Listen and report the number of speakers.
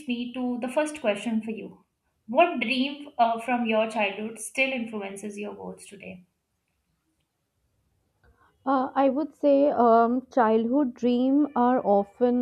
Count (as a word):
two